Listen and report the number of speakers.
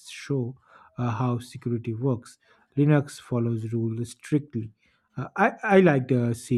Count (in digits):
1